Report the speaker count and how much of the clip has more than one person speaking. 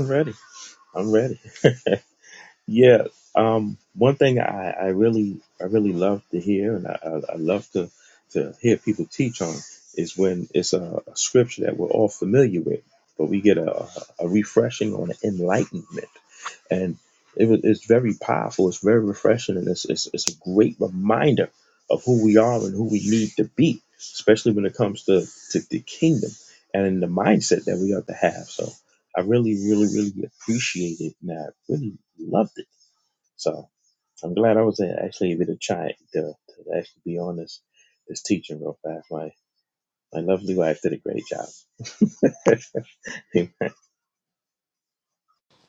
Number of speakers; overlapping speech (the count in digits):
1, no overlap